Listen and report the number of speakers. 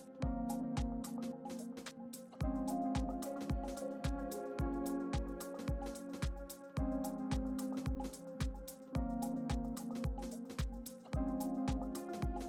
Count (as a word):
zero